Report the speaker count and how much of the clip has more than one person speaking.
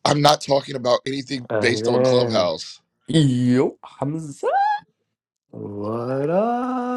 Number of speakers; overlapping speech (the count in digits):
3, about 15%